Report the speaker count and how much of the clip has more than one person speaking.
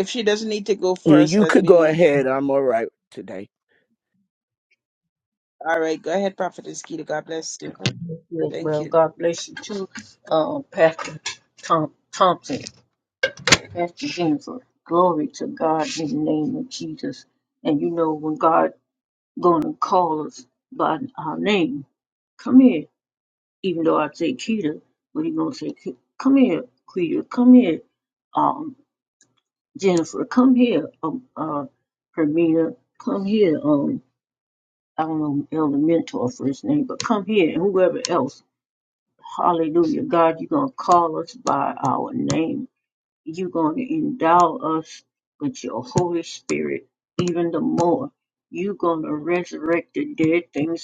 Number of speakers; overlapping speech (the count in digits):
3, about 3%